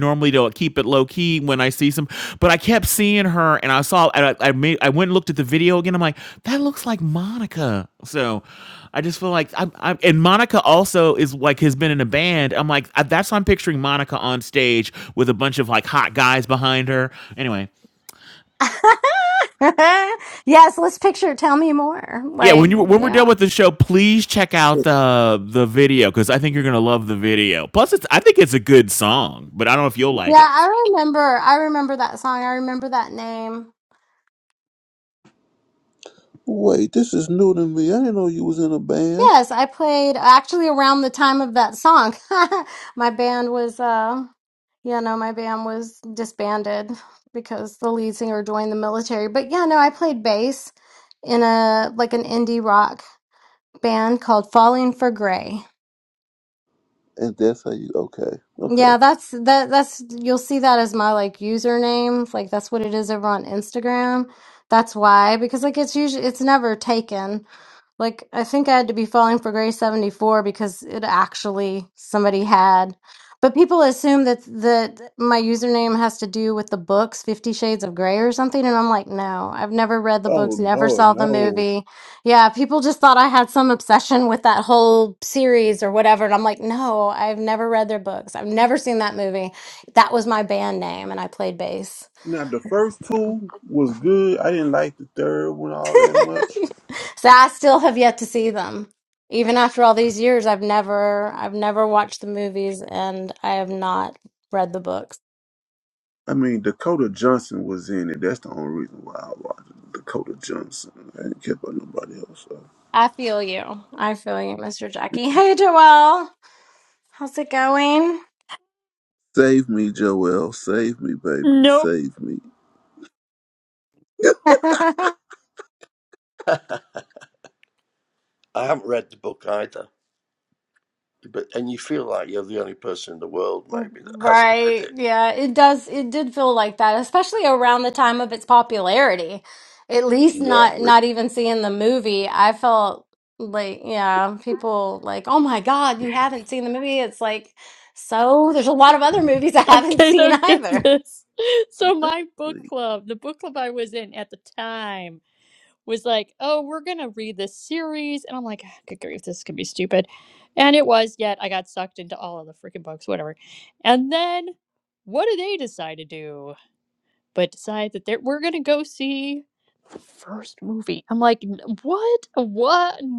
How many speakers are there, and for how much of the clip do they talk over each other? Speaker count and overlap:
5, about 4%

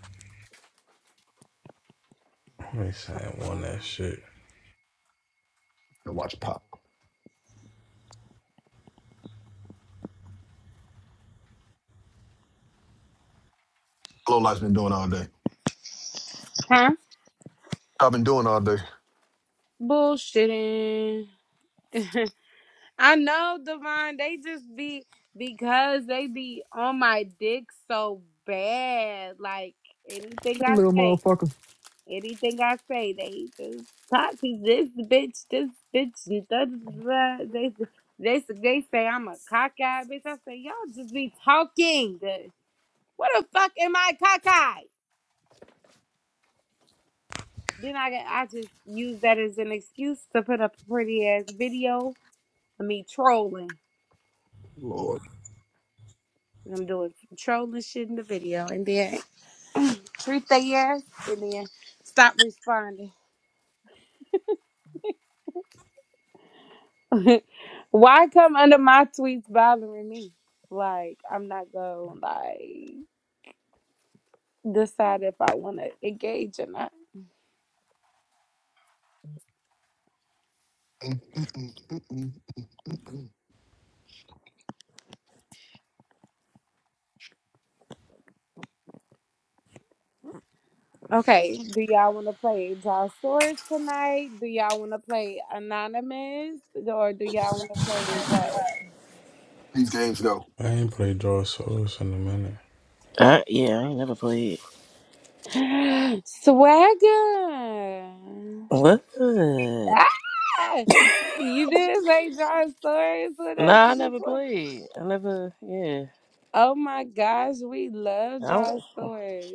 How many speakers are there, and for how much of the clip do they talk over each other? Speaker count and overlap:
4, about 2%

